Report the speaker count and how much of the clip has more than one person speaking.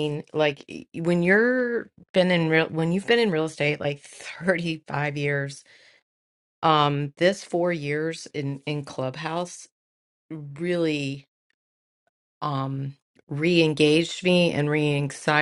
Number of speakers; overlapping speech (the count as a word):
one, no overlap